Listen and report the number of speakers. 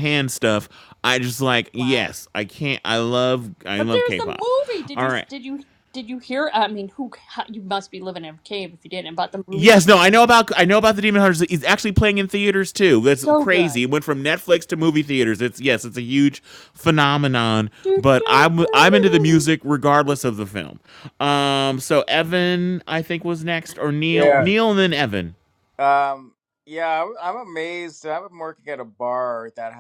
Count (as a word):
three